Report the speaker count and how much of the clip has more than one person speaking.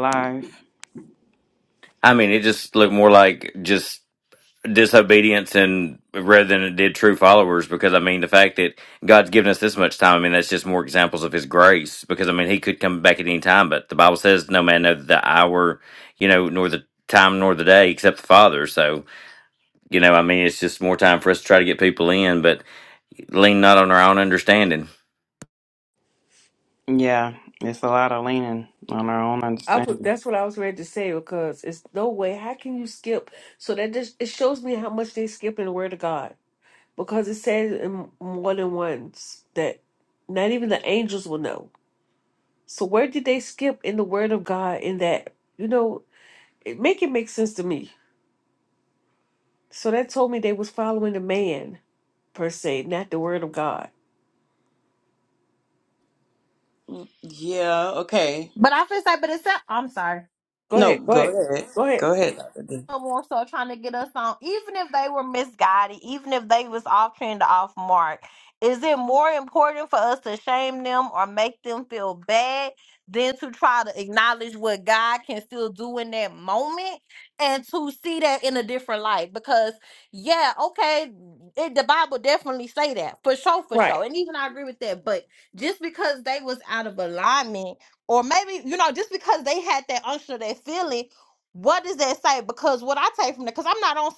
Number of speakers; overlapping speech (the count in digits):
4, about 2%